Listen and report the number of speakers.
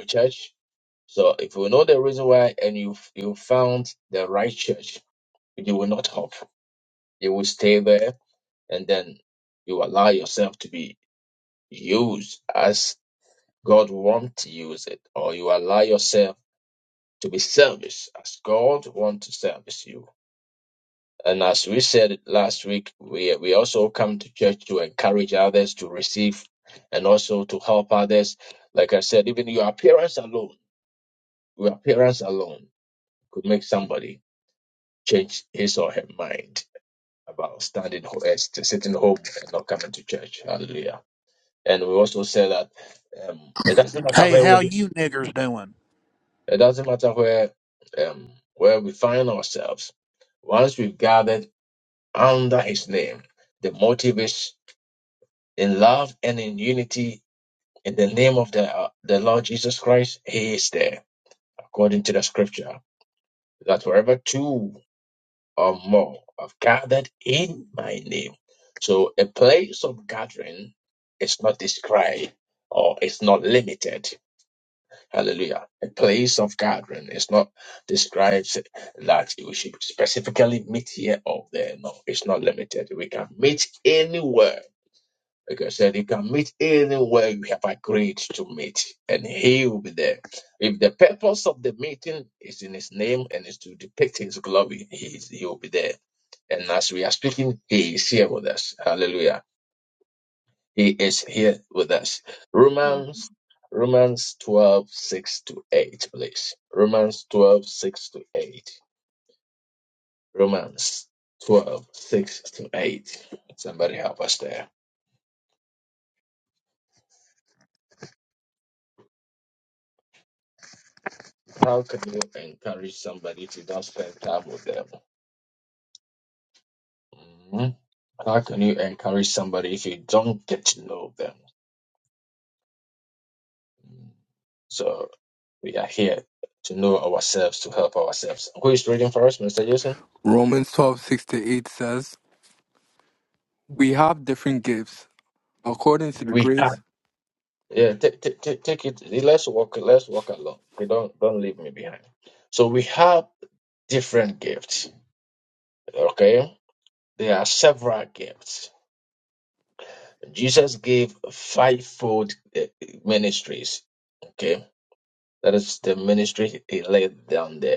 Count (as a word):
three